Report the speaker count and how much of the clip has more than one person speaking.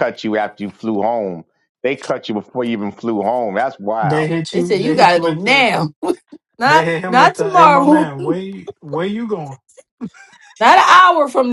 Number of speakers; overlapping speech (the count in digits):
3, about 24%